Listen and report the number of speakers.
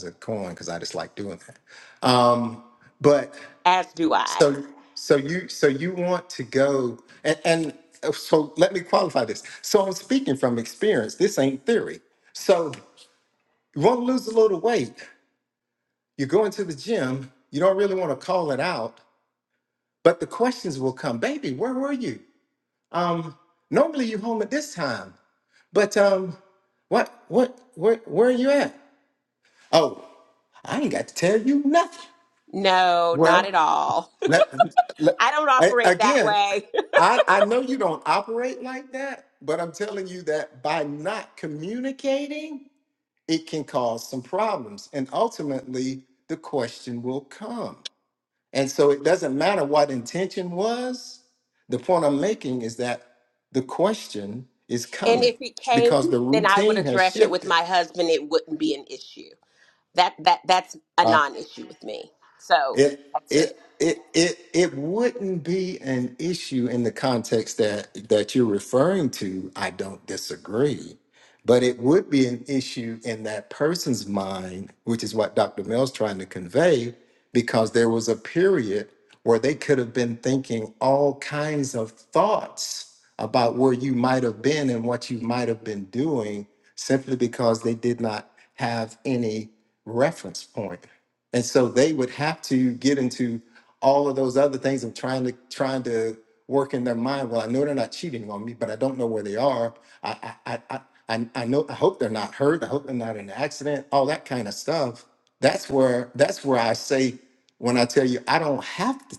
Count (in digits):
2